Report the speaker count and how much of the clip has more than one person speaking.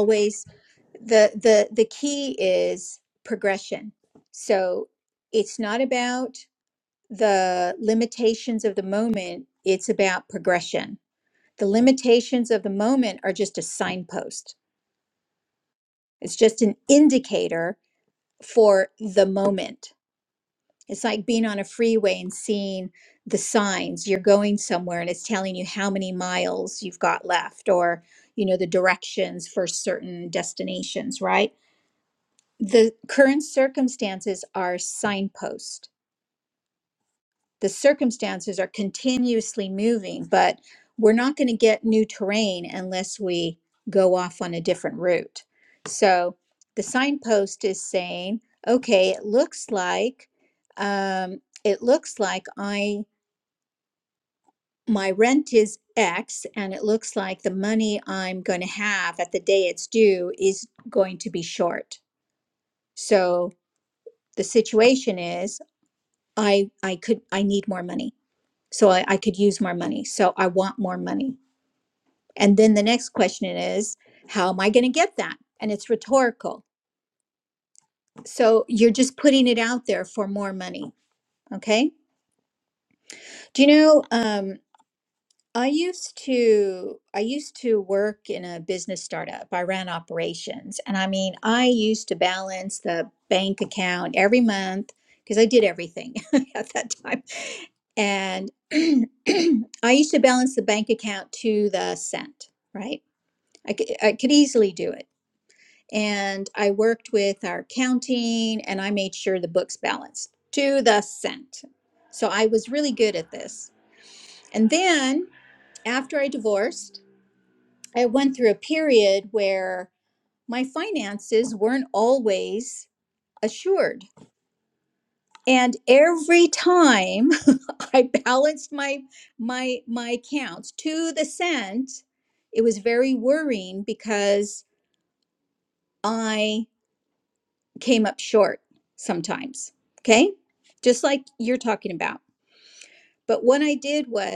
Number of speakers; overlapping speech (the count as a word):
one, no overlap